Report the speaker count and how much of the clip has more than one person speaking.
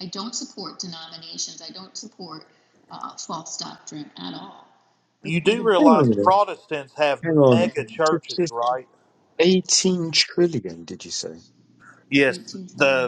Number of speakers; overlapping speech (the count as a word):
three, about 16%